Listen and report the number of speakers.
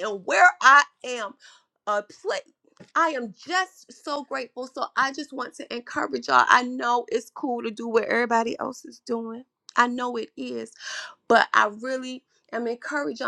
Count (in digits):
1